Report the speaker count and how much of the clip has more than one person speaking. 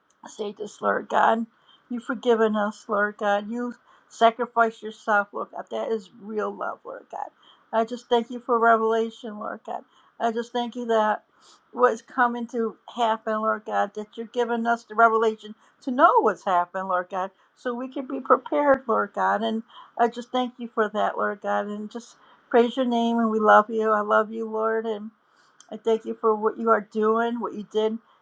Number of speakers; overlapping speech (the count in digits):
1, no overlap